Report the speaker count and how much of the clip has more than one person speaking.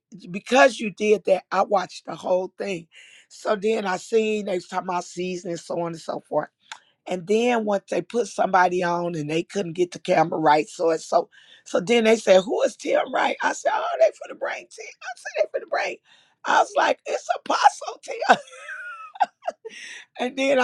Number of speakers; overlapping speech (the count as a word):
one, no overlap